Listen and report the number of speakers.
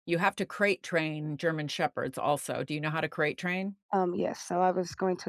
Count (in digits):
2